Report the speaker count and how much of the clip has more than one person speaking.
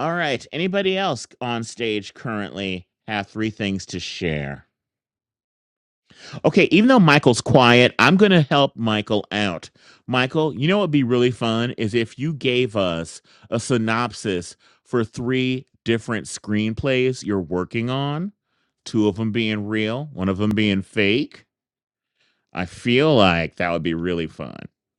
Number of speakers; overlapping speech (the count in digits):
1, no overlap